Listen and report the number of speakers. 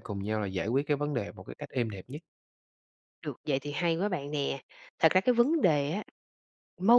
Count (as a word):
two